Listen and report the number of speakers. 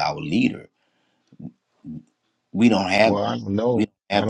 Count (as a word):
two